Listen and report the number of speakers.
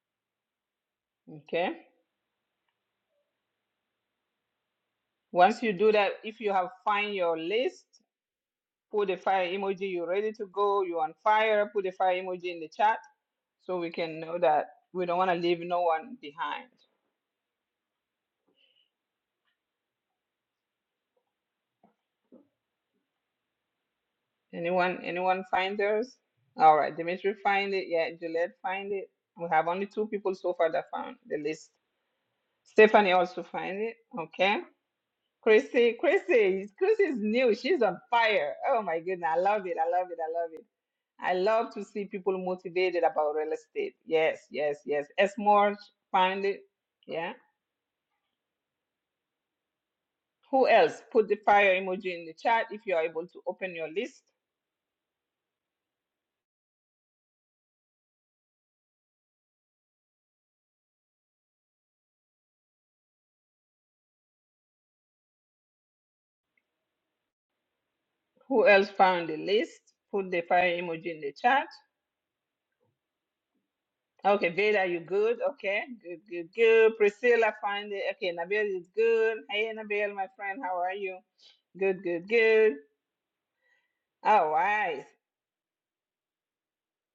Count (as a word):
one